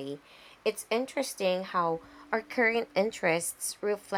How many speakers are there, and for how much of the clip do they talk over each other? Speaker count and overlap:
1, no overlap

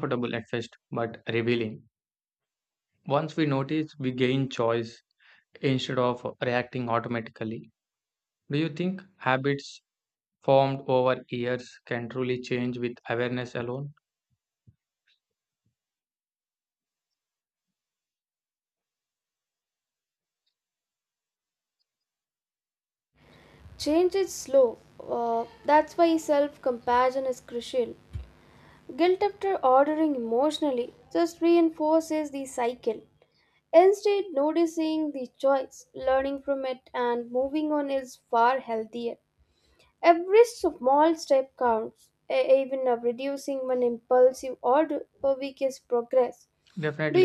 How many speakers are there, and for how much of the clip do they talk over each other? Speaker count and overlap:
2, under 1%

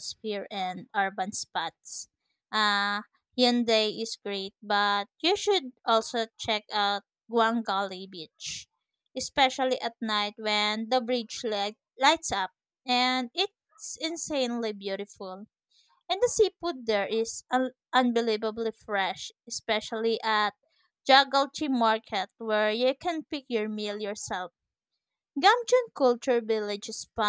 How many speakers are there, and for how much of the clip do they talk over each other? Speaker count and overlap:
1, no overlap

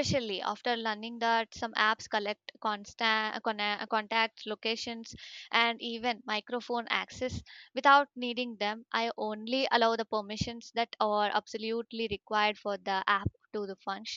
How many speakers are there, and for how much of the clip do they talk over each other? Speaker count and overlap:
1, no overlap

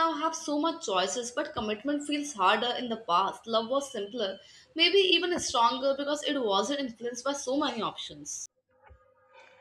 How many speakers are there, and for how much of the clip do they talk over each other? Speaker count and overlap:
1, no overlap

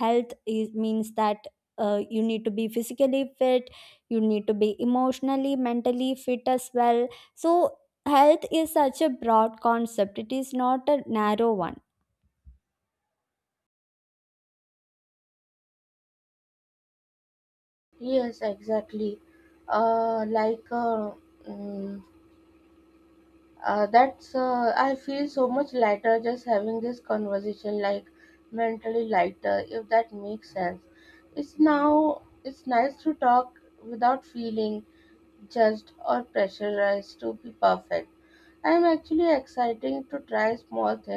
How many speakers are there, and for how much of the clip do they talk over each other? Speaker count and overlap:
2, no overlap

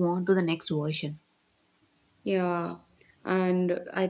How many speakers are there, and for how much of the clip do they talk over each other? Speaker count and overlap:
2, no overlap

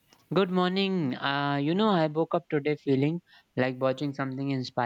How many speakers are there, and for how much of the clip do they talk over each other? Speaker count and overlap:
1, no overlap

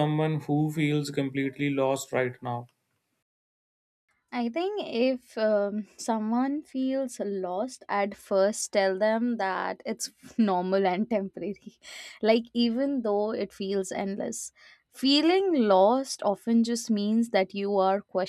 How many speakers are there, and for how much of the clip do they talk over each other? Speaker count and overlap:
2, no overlap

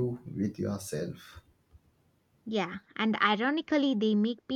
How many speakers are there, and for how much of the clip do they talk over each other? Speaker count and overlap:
2, no overlap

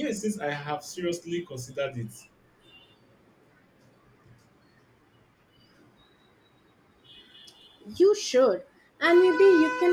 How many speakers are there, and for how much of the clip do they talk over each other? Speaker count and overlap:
2, no overlap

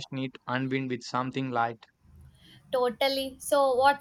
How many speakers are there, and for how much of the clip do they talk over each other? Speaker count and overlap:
2, no overlap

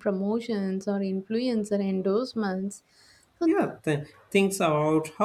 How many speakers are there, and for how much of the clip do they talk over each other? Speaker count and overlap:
2, about 2%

